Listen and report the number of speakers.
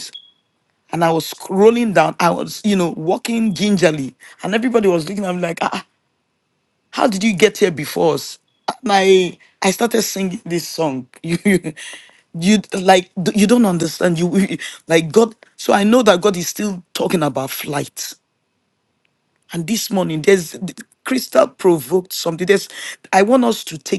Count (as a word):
one